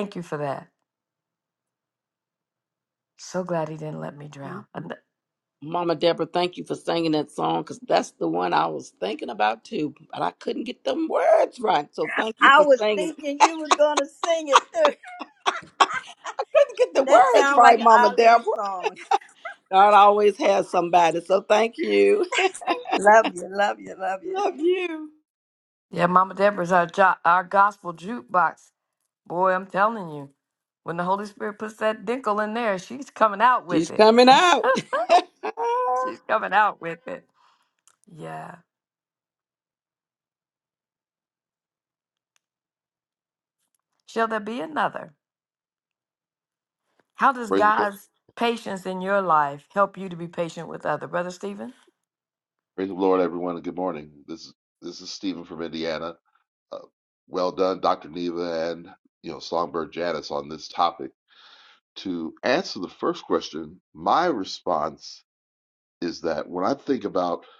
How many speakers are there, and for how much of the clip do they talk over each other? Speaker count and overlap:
4, about 5%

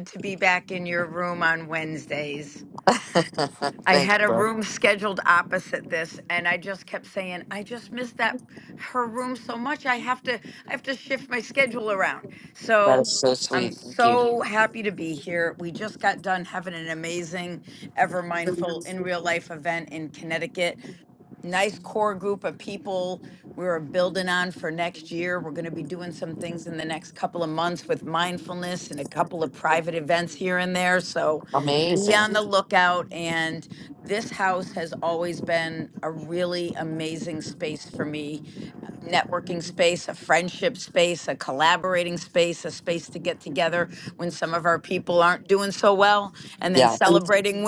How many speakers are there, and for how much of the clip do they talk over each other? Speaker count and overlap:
2, about 5%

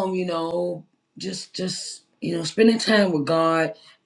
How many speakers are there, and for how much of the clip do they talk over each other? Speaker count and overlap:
1, no overlap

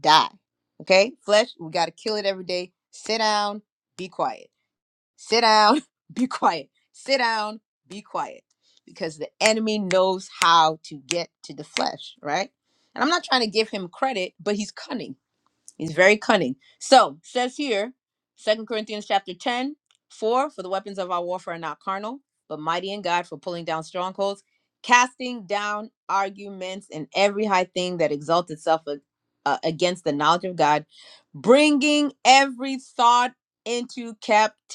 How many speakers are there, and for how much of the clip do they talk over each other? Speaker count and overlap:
1, no overlap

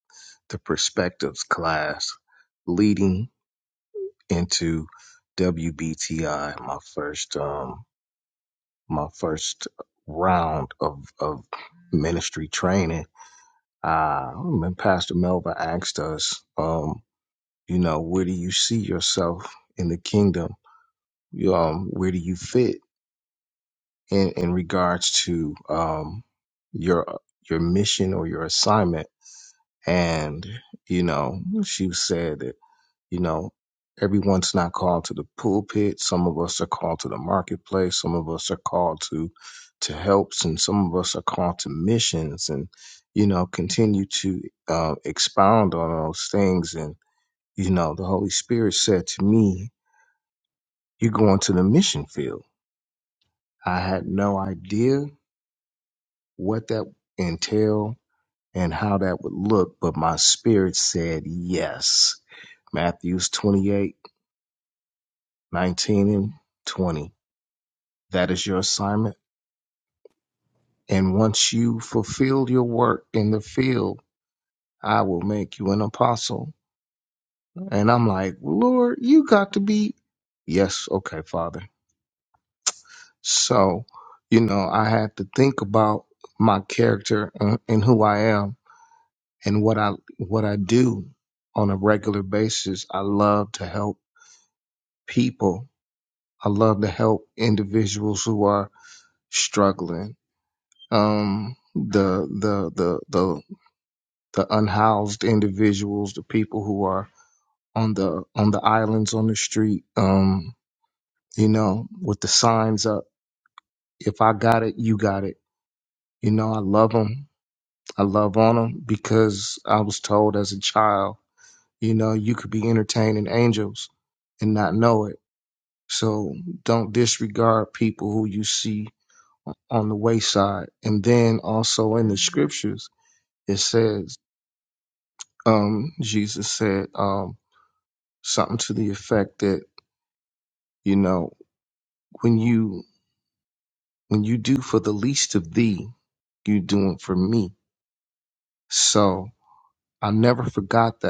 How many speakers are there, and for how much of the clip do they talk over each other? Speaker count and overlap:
1, no overlap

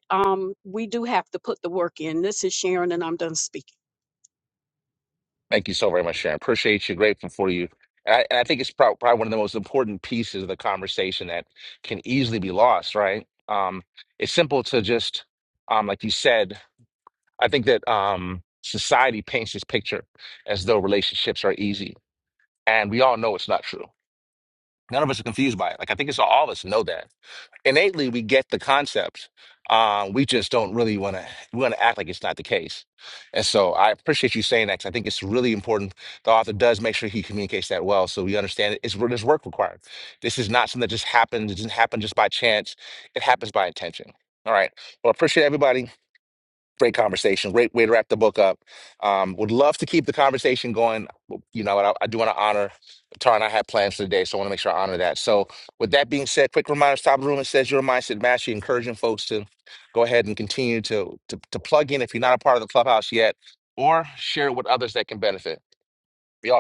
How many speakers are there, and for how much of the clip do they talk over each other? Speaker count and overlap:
2, no overlap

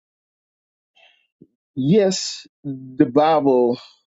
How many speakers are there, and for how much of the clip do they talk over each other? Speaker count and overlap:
1, no overlap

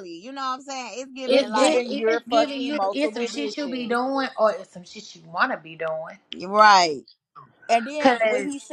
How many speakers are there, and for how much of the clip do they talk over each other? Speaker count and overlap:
3, about 33%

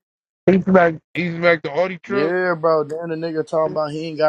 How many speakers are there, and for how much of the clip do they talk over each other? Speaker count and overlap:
2, about 5%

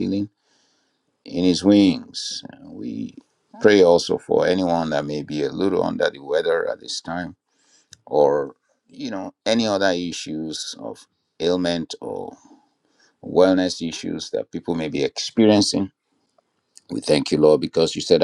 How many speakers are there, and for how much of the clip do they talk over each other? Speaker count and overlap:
1, no overlap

